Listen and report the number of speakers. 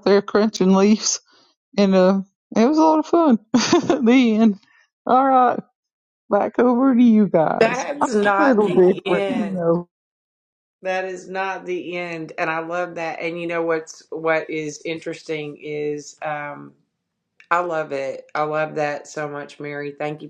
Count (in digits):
2